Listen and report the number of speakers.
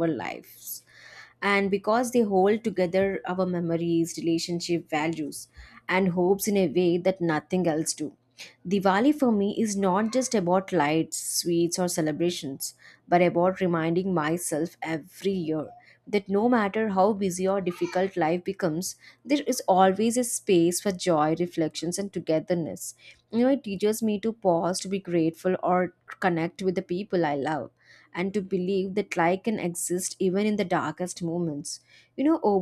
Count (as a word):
one